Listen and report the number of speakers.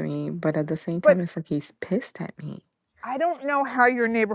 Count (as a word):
two